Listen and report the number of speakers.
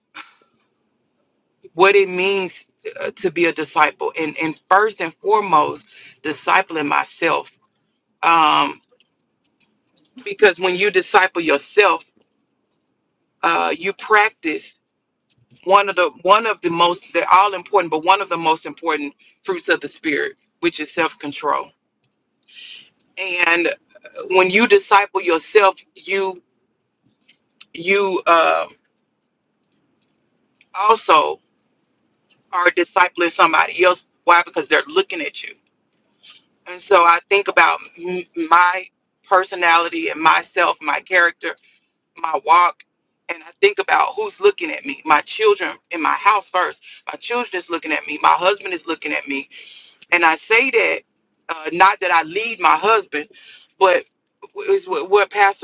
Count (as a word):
one